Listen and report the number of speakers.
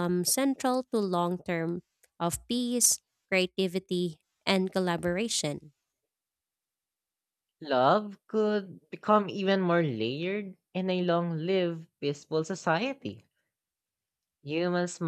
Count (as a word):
two